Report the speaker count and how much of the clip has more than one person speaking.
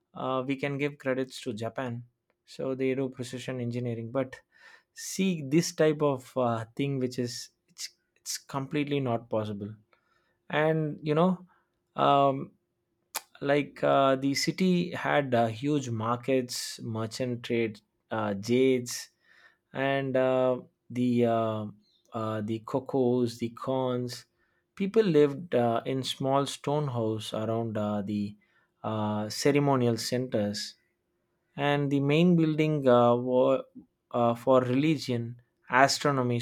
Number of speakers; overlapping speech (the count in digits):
1, no overlap